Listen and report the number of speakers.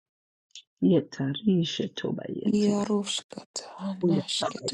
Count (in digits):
2